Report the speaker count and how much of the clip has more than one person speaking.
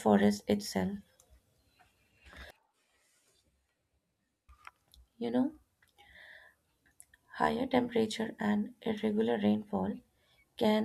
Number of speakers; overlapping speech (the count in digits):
1, no overlap